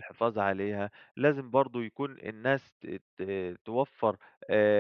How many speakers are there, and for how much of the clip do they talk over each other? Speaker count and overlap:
1, no overlap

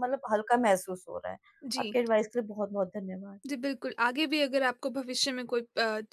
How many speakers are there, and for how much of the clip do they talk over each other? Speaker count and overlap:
2, about 3%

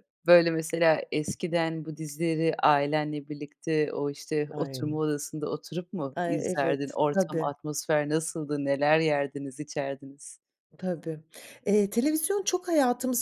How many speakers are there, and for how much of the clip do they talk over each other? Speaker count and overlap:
2, about 10%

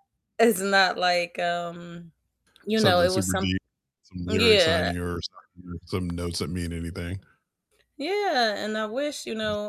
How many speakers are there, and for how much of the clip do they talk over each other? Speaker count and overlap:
2, about 14%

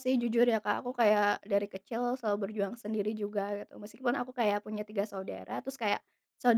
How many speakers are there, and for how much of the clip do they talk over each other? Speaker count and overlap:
1, no overlap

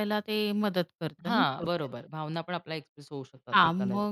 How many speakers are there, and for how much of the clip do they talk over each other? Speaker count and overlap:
2, about 30%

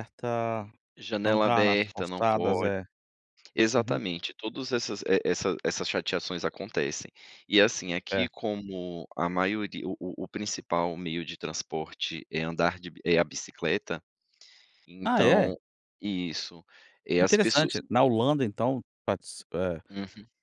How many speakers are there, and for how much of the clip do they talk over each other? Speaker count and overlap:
2, about 14%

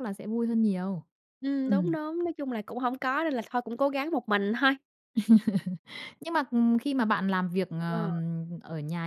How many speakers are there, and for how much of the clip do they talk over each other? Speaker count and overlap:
2, about 6%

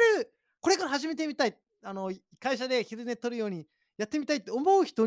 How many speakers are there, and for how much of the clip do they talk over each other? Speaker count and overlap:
1, no overlap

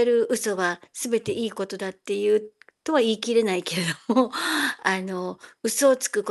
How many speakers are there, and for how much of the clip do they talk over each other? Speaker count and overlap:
1, no overlap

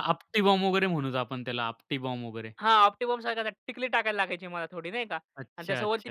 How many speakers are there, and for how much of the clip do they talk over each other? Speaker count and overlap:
2, about 9%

